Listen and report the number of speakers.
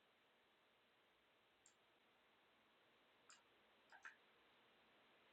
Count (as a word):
zero